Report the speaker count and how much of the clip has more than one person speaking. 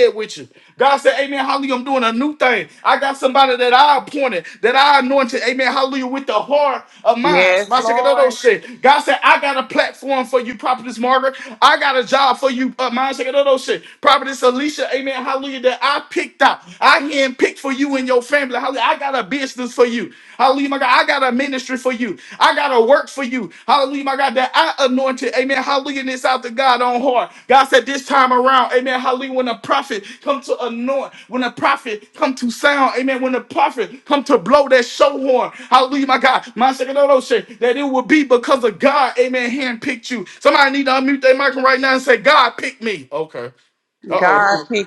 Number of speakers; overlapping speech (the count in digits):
2, about 3%